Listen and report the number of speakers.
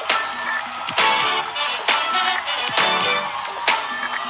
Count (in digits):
0